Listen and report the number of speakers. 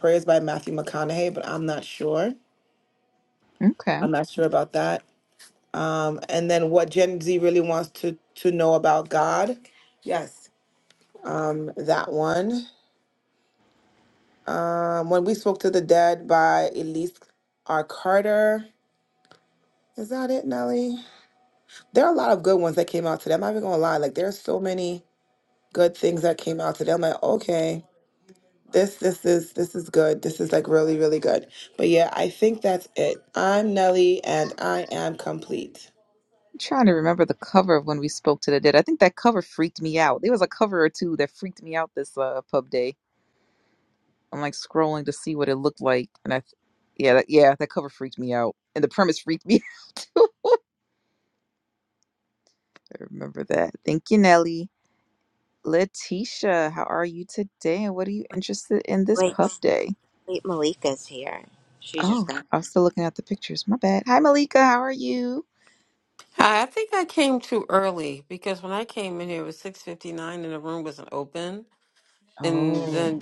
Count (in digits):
4